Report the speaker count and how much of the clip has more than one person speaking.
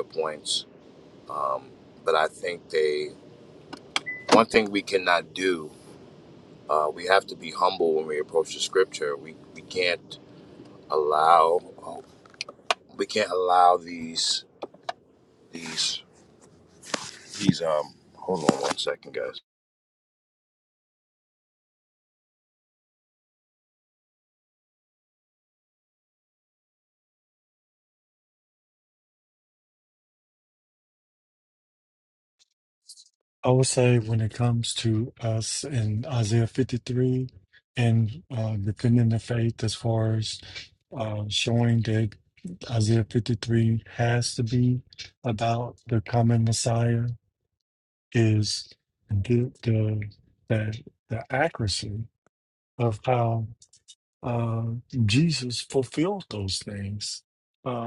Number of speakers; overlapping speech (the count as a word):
two, no overlap